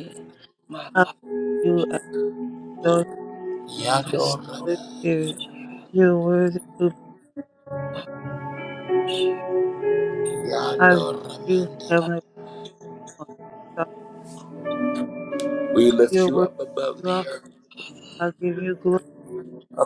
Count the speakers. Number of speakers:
three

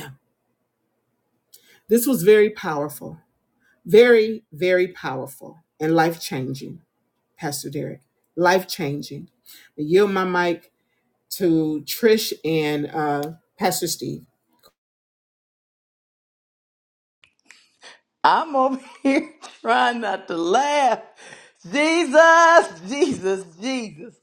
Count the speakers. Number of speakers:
two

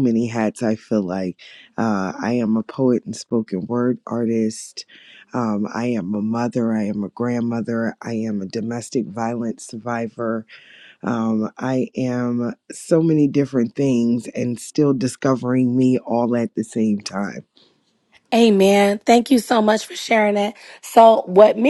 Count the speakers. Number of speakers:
two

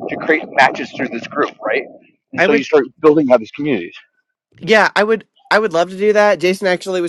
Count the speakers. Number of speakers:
two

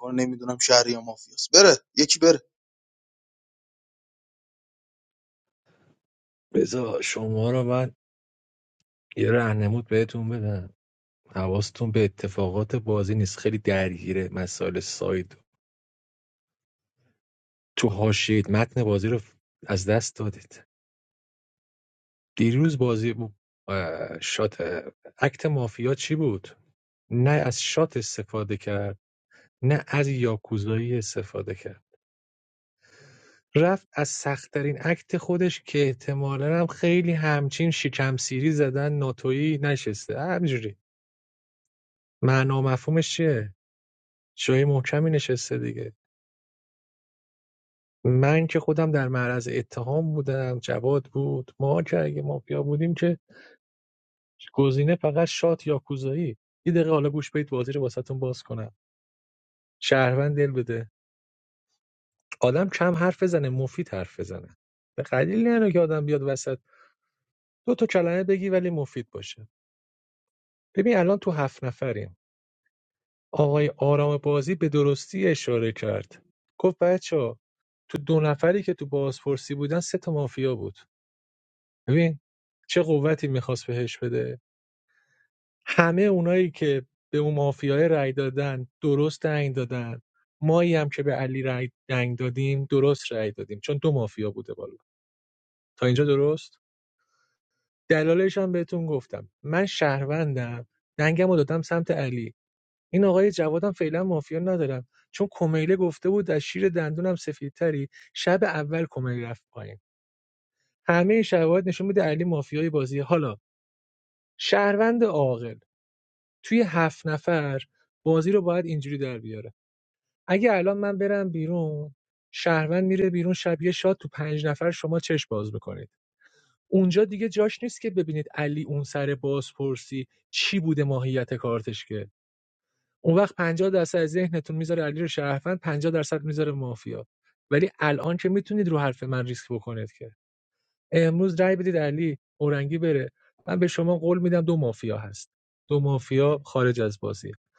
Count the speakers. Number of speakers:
two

